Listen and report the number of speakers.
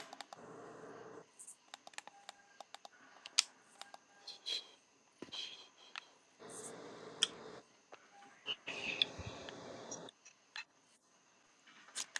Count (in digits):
0